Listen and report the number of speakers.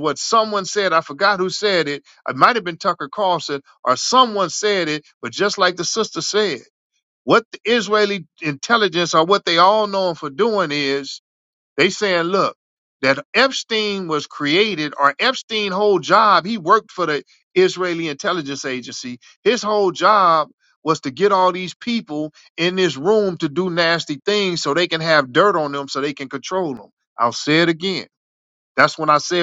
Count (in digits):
1